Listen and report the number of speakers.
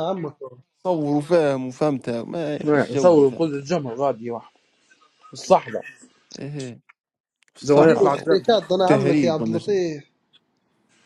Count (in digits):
3